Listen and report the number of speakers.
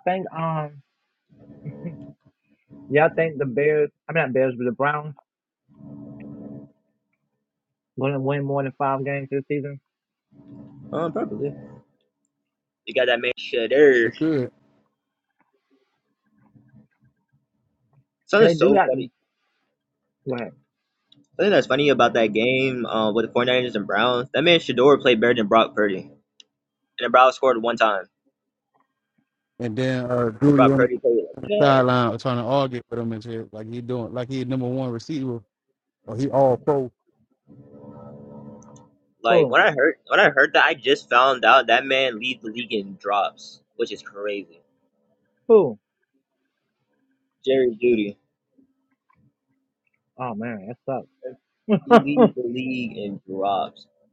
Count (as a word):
three